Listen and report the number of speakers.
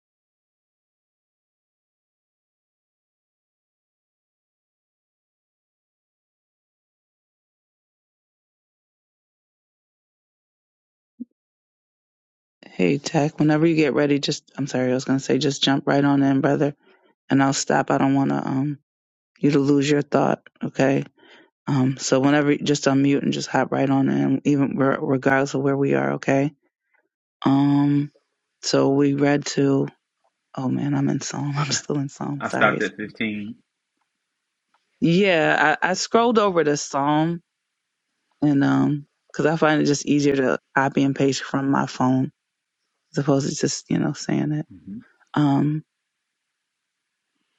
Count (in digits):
2